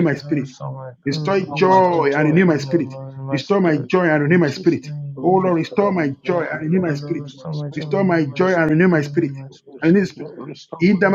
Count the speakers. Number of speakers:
three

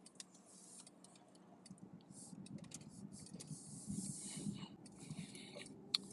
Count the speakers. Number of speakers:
zero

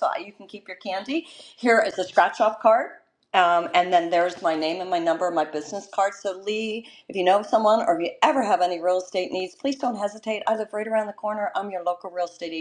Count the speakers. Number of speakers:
one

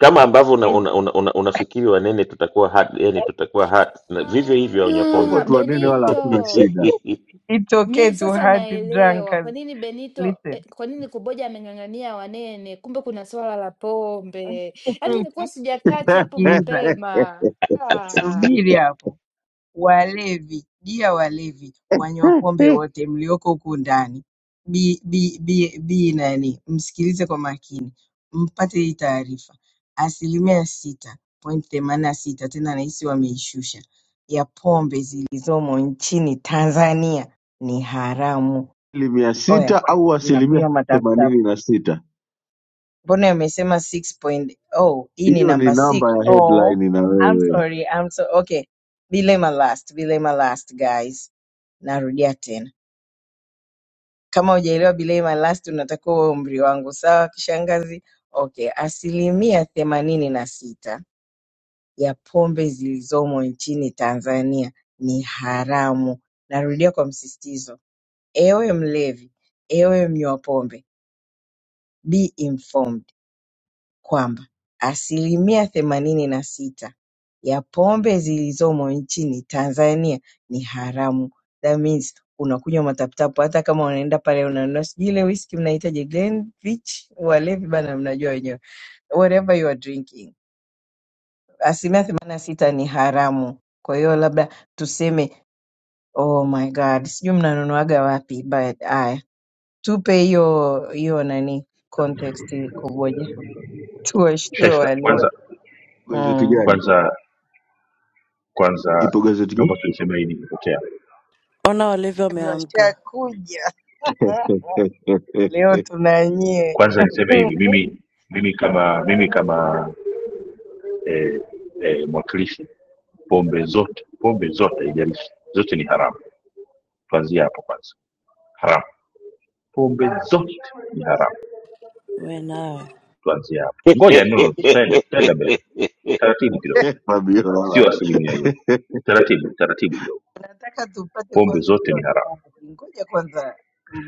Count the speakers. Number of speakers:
six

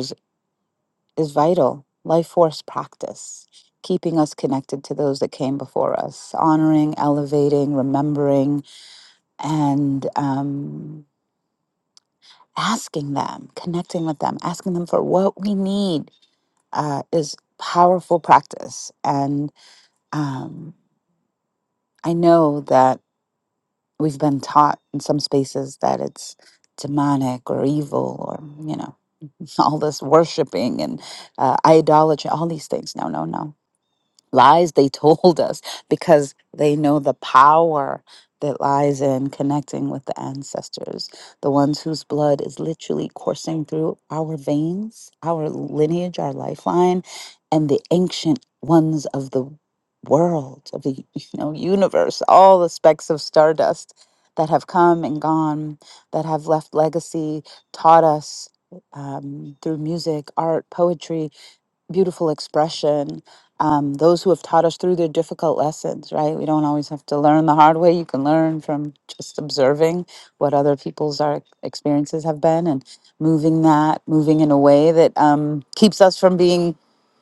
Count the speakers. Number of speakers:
one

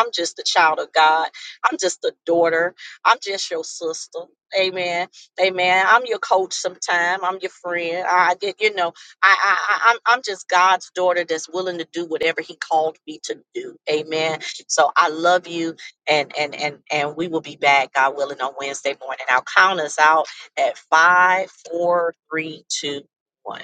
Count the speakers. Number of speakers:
one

